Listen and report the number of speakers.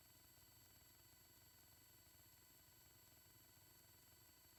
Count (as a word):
zero